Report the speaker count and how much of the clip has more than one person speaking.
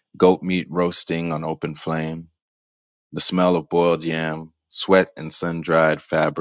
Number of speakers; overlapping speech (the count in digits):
1, no overlap